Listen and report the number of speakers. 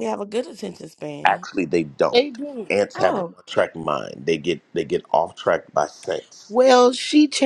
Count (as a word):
three